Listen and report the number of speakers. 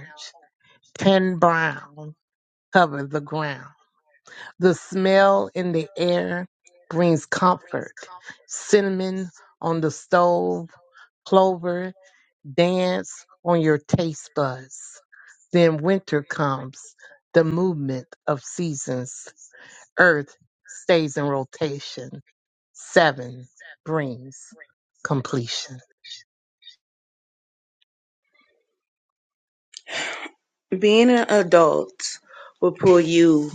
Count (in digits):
2